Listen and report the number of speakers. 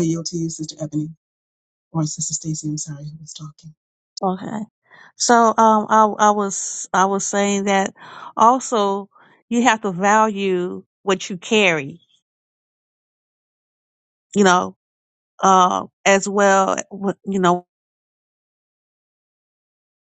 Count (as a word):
two